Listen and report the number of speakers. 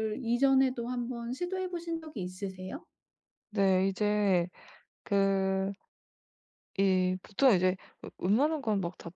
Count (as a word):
two